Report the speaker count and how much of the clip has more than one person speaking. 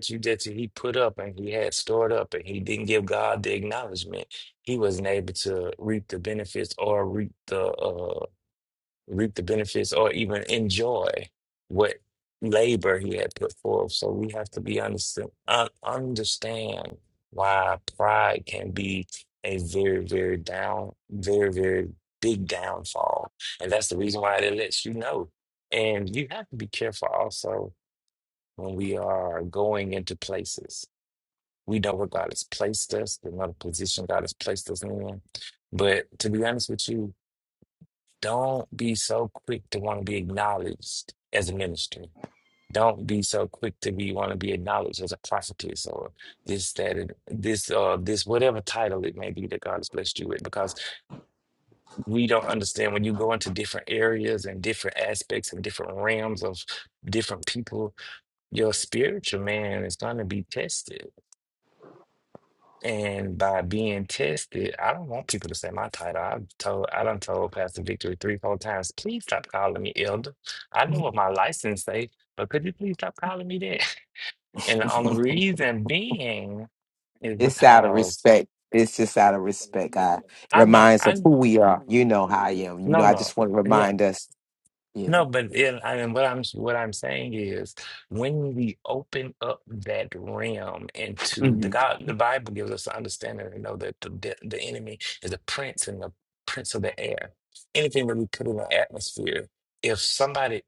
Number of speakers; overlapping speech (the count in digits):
2, about 3%